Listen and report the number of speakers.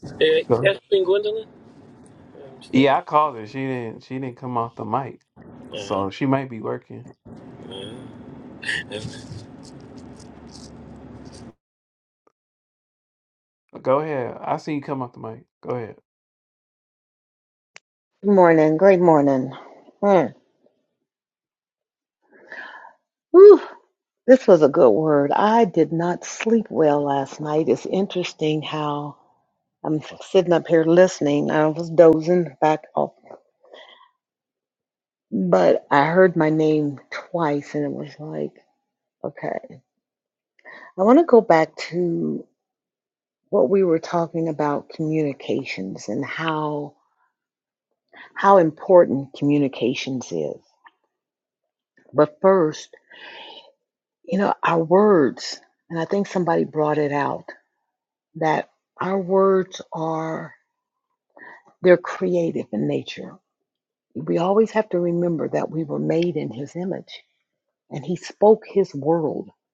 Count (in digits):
3